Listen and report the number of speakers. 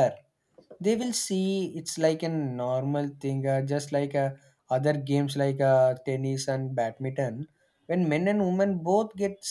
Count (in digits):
1